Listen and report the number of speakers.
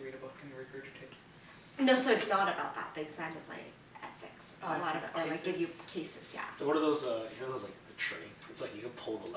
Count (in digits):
3